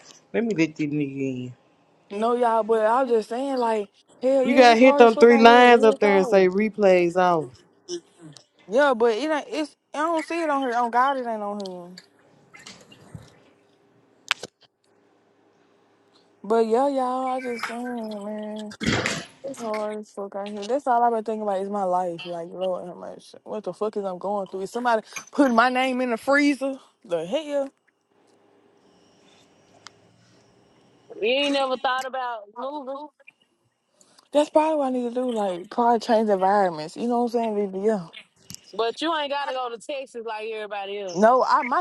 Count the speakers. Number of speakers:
four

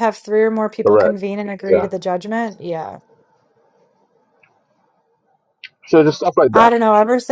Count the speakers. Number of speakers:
two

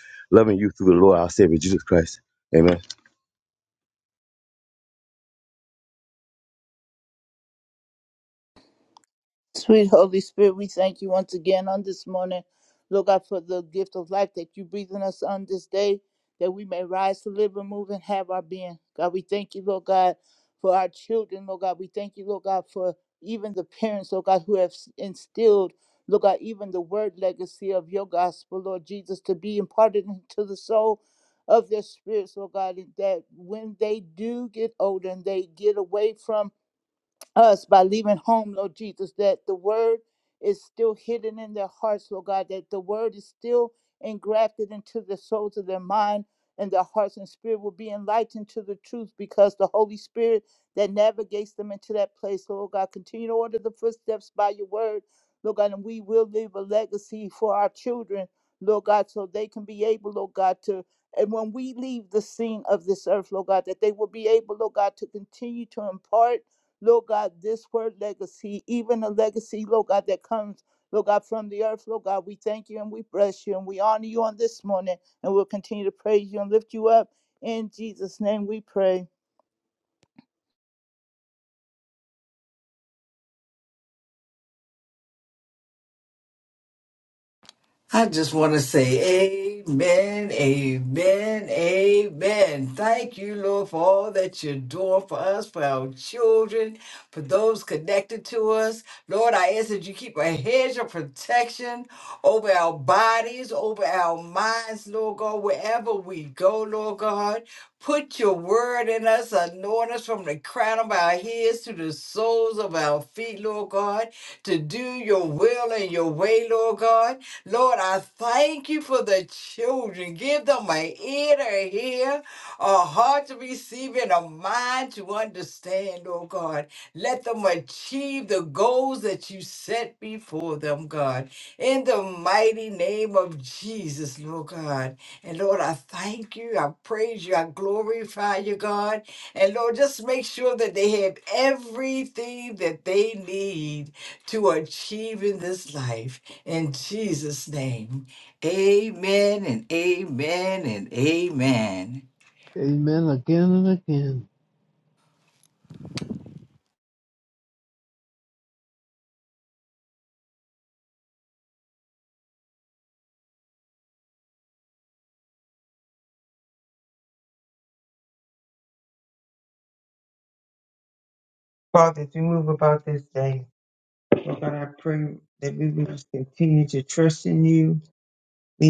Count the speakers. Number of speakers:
five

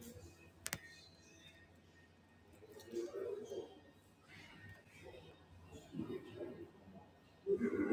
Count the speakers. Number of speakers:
zero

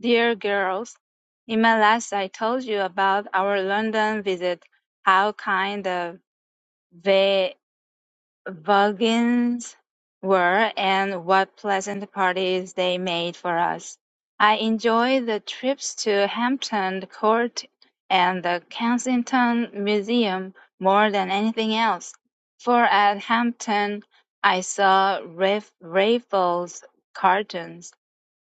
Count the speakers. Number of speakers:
one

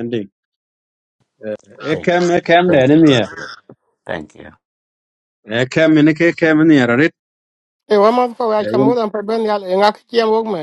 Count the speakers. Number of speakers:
three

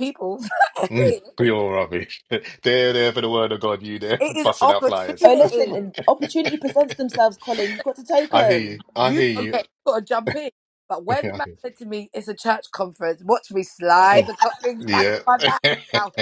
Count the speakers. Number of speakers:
three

